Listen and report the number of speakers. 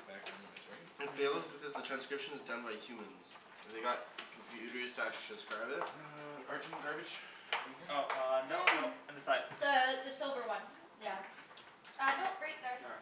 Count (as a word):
four